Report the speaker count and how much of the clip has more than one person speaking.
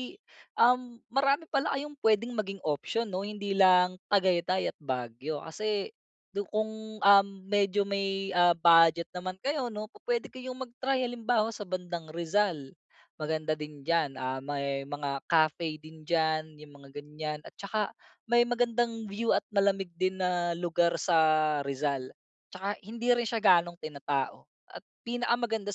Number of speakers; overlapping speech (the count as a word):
one, no overlap